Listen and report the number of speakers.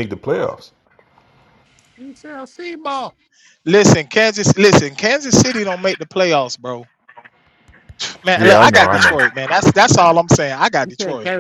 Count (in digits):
3